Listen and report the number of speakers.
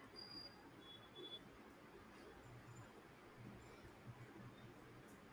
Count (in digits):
0